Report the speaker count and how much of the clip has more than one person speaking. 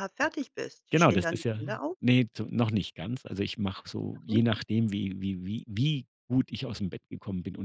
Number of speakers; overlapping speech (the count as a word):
two, about 13%